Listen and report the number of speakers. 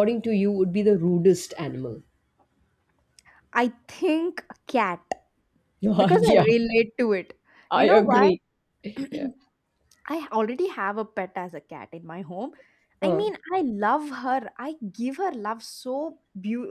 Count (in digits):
2